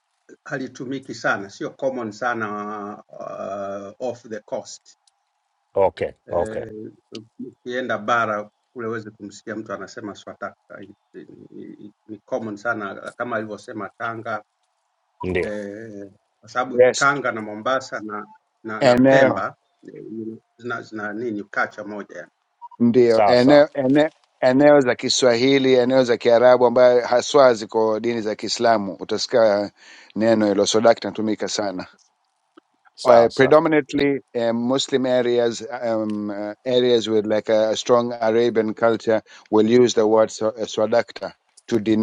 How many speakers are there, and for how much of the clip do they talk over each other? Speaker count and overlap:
three, about 5%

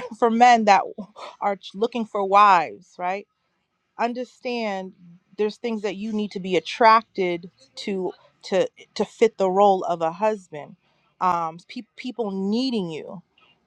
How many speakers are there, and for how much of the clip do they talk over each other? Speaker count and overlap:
one, no overlap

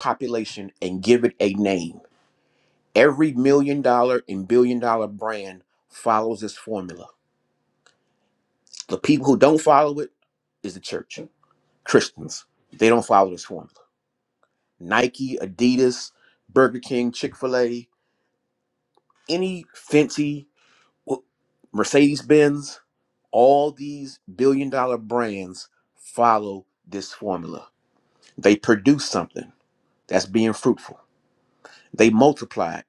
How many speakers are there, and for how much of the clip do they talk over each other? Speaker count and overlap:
one, no overlap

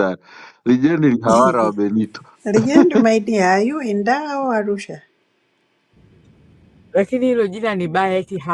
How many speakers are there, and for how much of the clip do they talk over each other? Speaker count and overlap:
three, no overlap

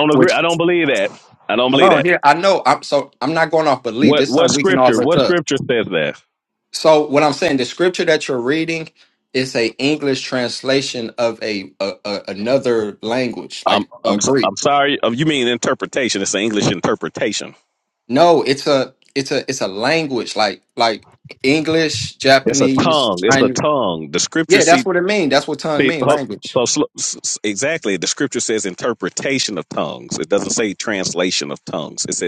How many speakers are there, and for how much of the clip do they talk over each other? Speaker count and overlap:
two, about 14%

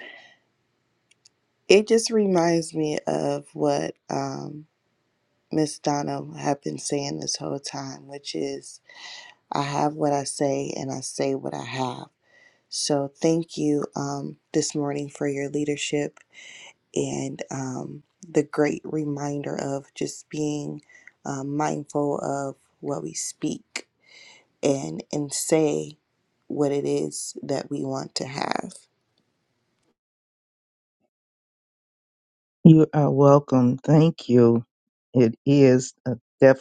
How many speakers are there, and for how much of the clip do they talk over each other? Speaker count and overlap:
two, no overlap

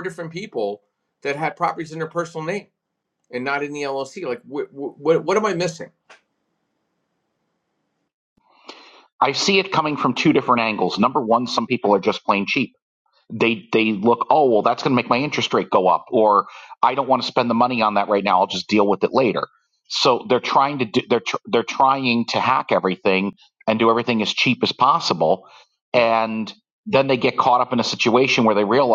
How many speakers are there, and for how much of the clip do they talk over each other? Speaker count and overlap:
two, no overlap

